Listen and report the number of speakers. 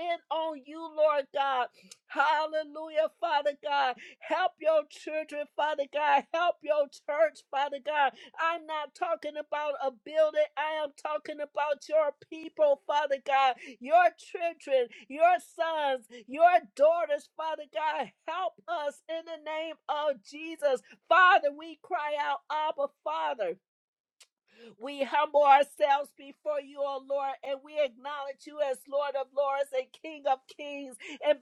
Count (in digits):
1